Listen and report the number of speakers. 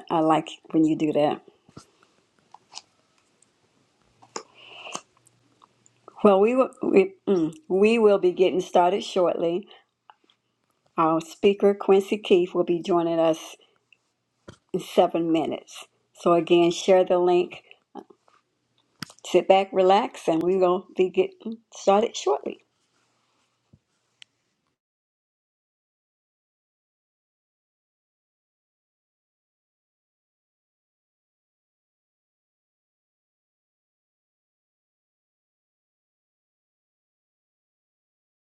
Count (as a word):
one